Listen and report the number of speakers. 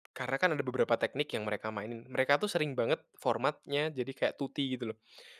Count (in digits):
1